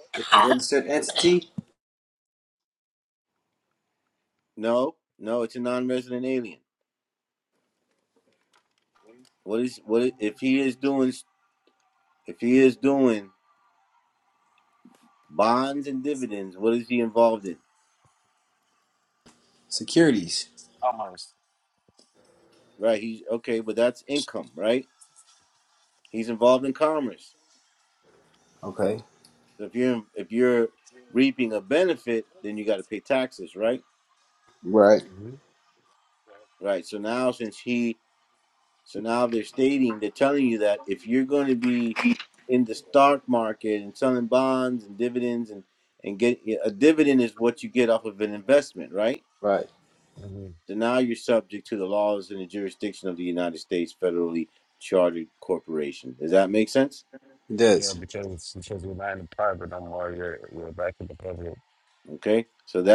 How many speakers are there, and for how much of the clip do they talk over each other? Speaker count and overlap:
three, under 1%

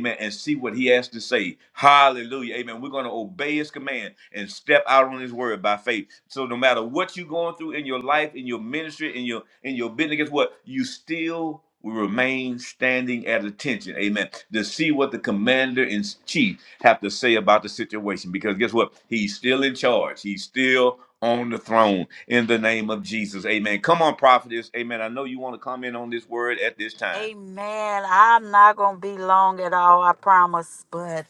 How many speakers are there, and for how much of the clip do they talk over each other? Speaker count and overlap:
two, under 1%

